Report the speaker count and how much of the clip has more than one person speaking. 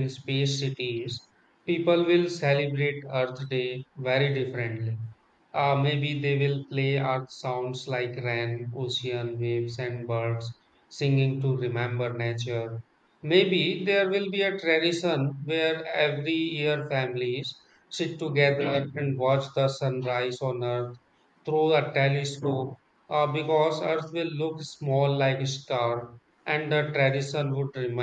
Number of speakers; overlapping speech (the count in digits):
1, no overlap